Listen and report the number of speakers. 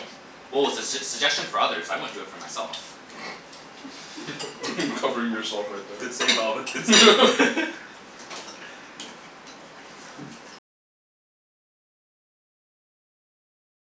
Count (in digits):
2